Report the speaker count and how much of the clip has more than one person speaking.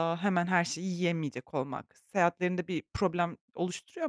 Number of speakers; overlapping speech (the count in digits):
1, no overlap